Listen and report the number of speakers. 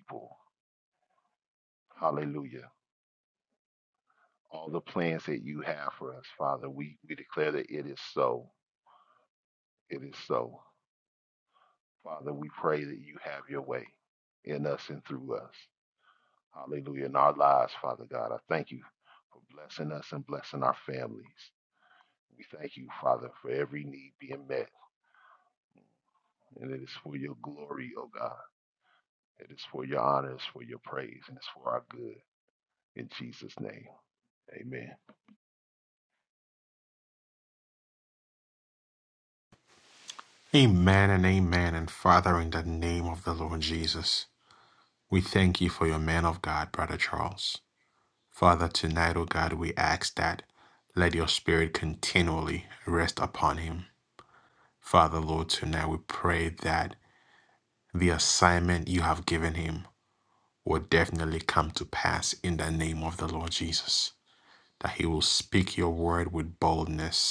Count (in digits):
2